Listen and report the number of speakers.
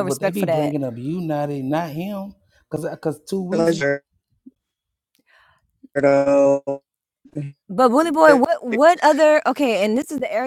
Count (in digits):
3